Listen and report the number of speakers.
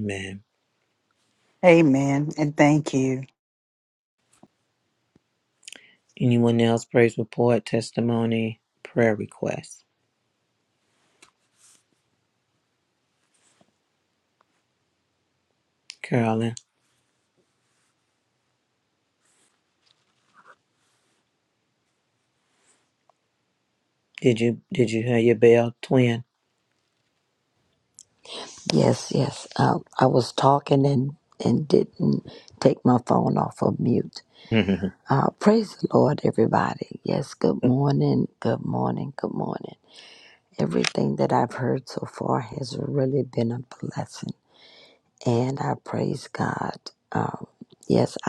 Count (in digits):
3